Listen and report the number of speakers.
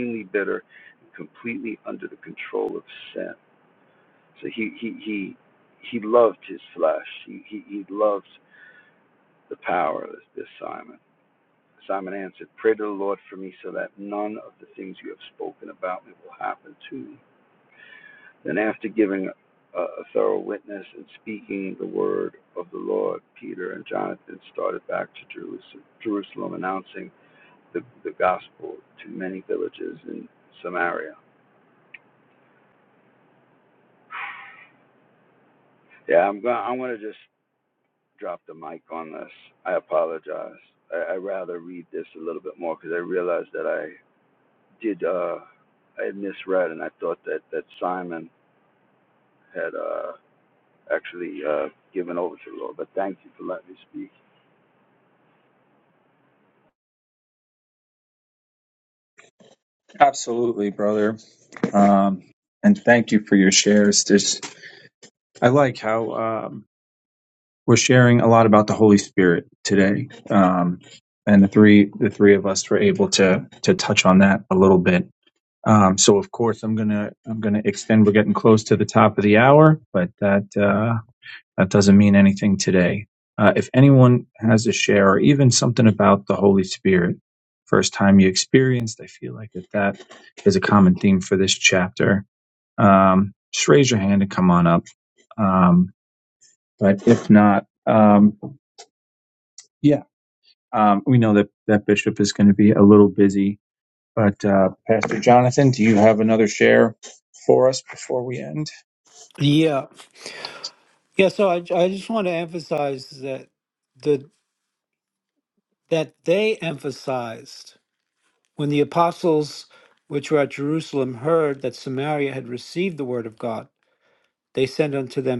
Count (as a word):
three